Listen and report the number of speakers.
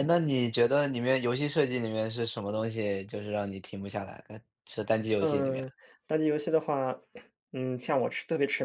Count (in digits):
2